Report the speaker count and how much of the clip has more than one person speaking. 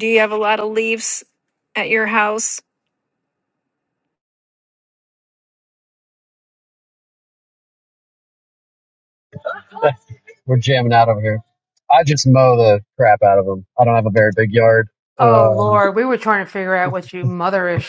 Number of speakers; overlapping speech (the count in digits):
3, about 4%